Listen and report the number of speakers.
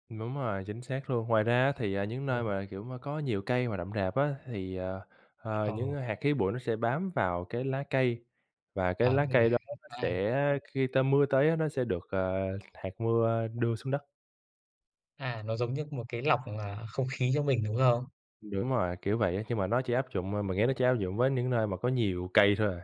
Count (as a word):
two